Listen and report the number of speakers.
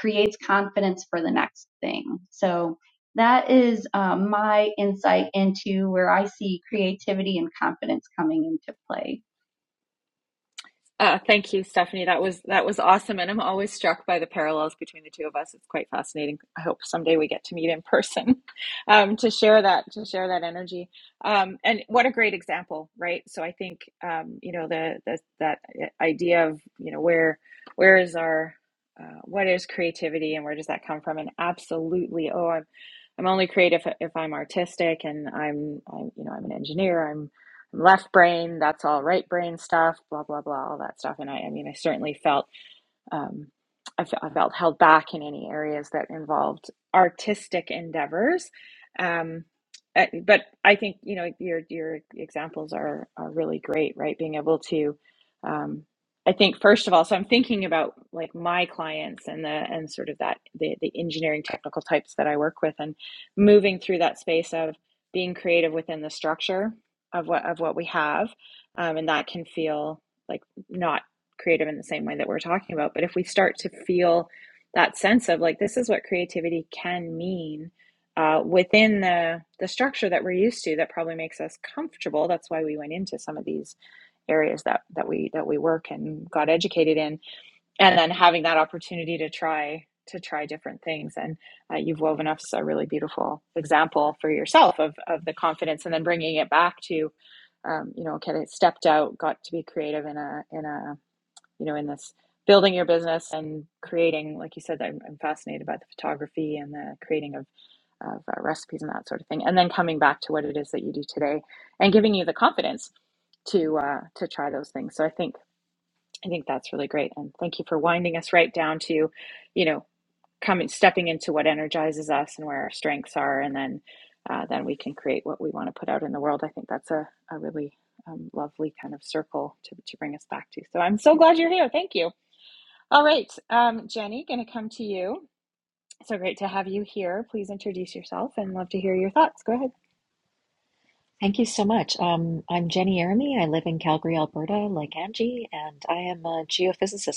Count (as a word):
three